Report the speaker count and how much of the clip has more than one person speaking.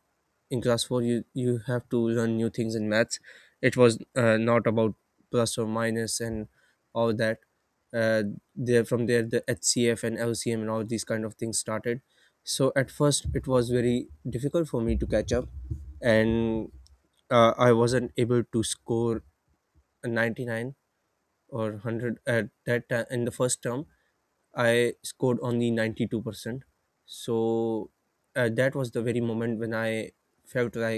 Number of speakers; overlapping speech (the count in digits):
1, no overlap